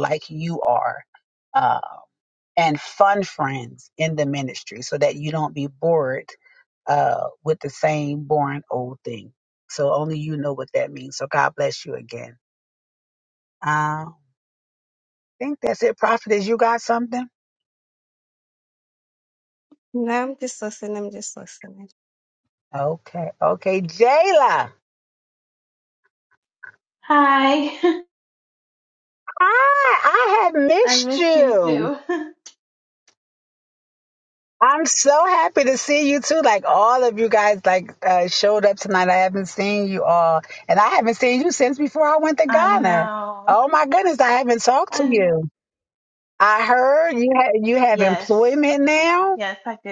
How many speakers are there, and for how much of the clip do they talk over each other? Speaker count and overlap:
3, about 5%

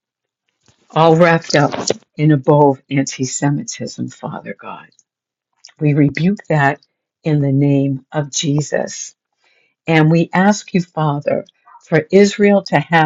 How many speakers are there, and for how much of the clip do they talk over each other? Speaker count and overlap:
1, no overlap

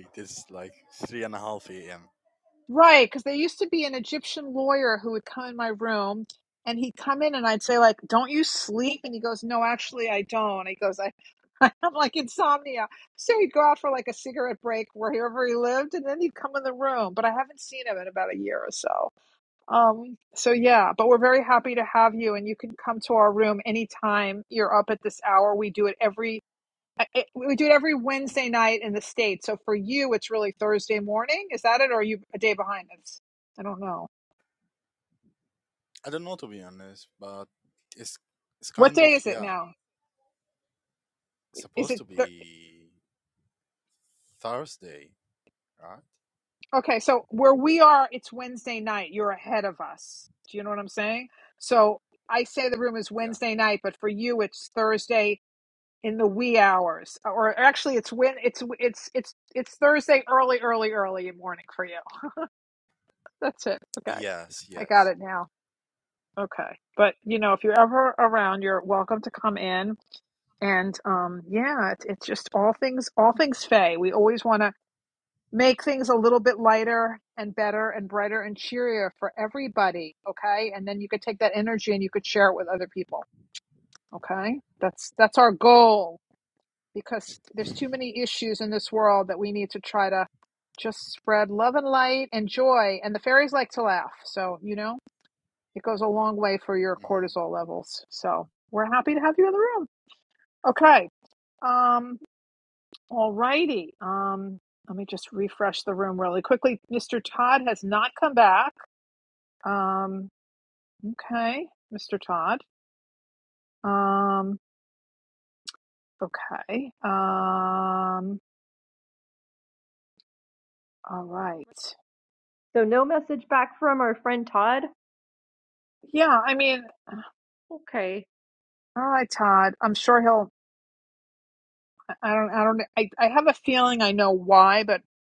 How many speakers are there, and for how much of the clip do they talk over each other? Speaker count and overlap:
3, about 2%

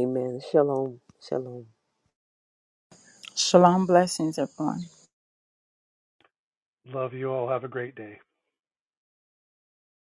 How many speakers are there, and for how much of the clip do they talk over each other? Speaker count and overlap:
3, no overlap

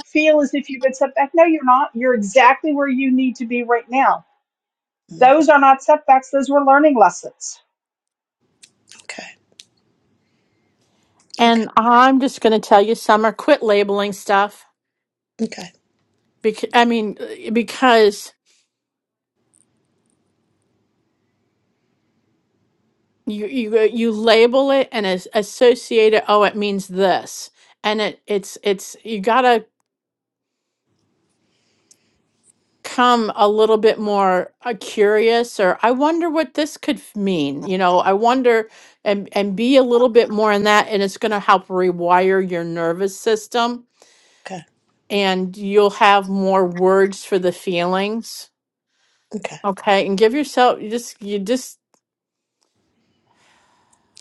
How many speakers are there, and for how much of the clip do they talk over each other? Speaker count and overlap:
3, about 1%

